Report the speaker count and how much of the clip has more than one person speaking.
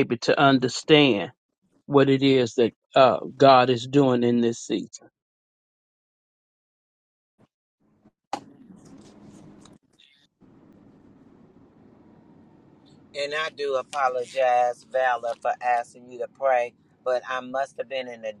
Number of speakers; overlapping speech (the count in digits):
2, no overlap